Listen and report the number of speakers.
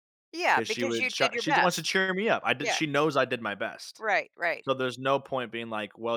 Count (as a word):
two